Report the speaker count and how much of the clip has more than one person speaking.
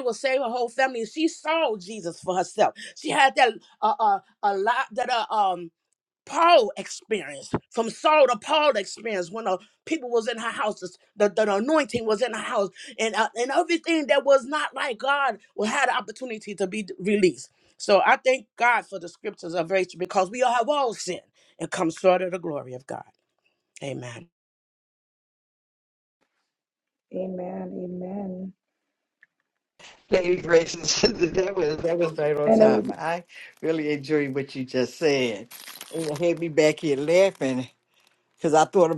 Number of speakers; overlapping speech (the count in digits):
3, about 1%